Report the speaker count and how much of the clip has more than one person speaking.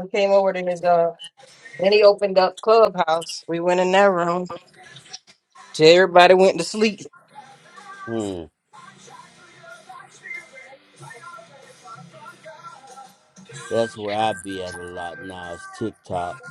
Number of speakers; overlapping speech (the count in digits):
2, no overlap